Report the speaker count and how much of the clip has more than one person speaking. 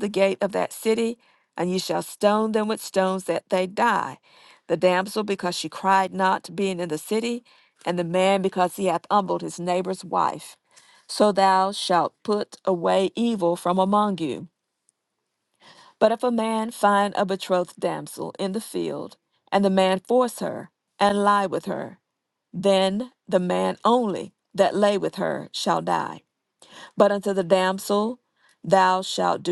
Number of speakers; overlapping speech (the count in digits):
1, no overlap